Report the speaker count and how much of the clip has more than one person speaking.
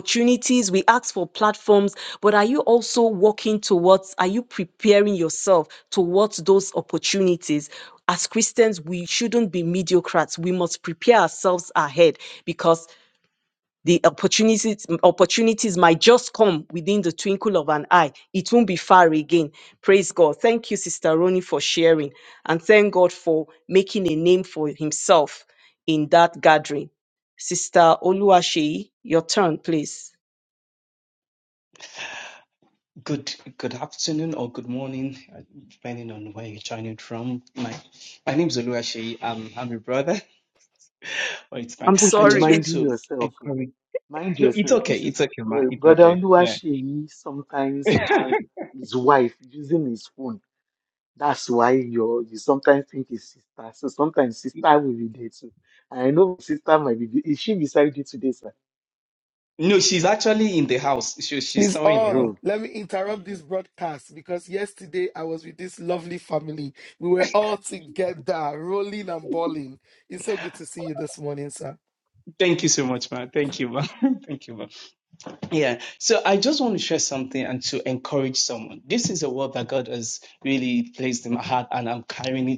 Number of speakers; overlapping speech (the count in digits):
4, about 5%